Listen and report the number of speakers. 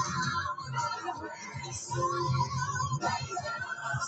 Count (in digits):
0